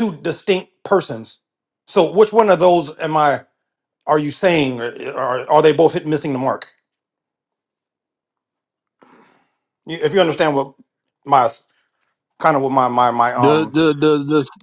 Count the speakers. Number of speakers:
two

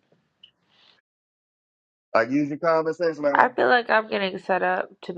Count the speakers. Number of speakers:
two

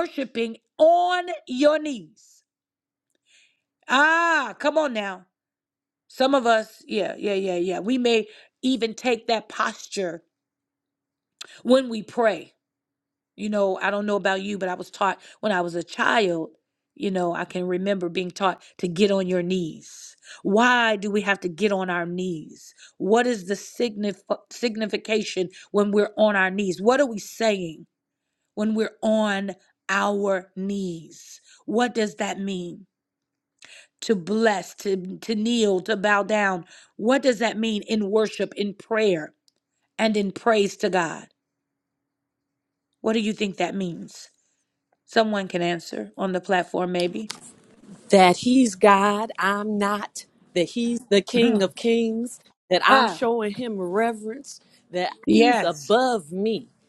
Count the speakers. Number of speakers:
two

